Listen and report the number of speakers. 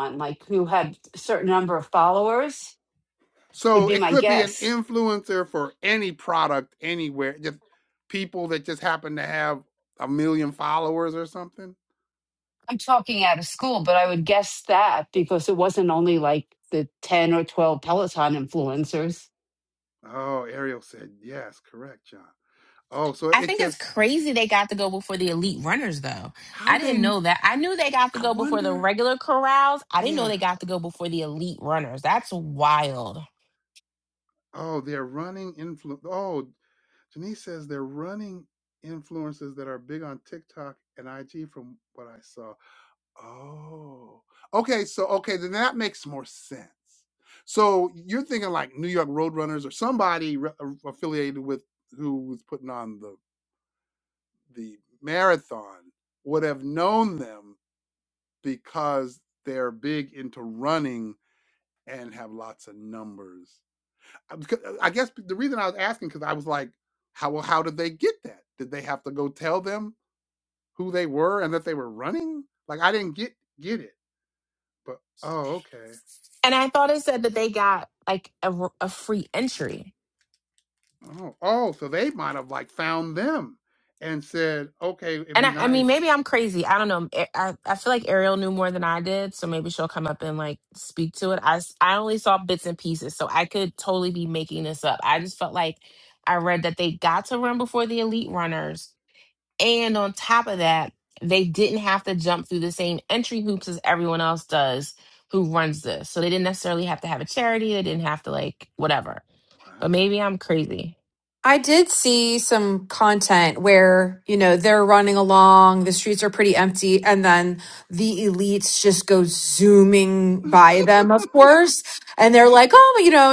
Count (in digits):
4